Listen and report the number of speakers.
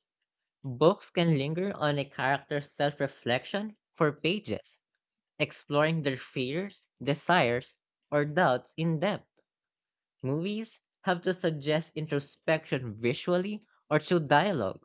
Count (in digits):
1